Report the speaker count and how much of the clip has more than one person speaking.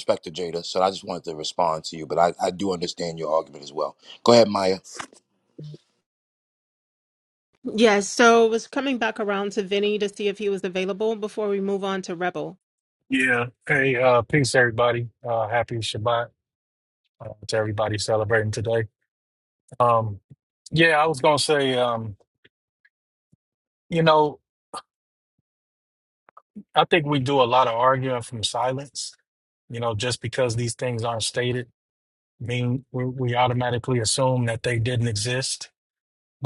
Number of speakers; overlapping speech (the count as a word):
three, no overlap